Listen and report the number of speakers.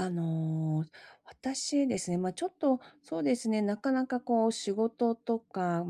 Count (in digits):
1